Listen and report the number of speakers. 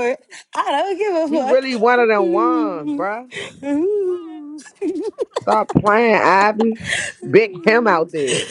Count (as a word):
two